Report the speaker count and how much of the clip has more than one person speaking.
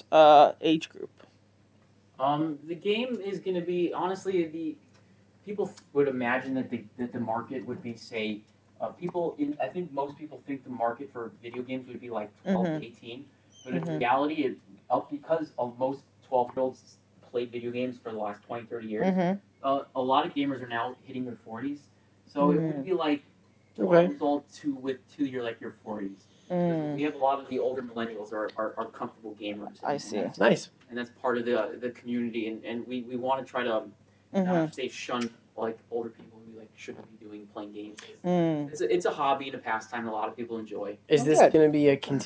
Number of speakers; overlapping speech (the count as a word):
three, about 7%